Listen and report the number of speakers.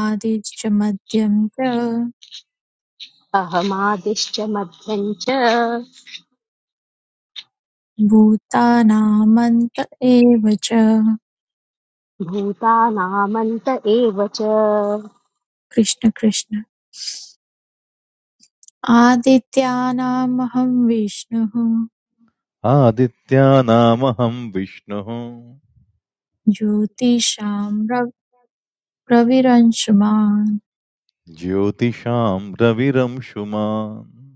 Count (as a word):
three